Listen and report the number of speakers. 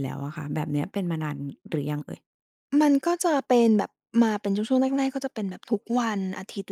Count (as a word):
two